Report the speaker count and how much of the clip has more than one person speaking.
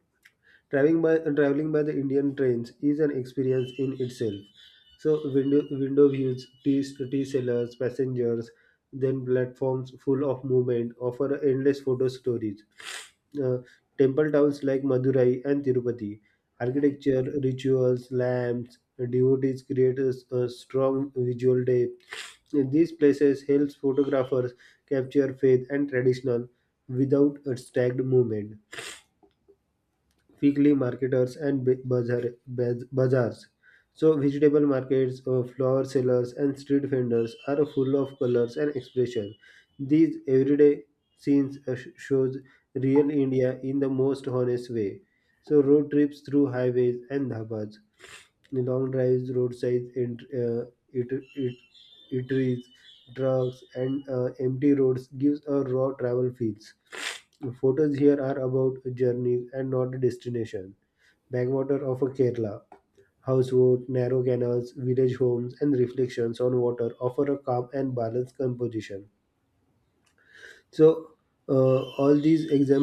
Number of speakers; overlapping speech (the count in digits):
1, no overlap